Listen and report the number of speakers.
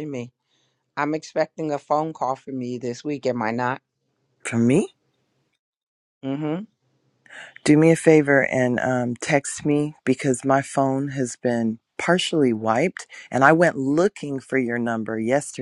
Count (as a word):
two